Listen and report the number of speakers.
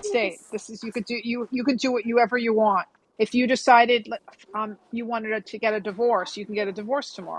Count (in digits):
1